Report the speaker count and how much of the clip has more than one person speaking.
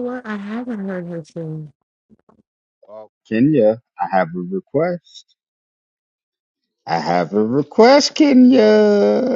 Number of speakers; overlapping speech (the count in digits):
2, no overlap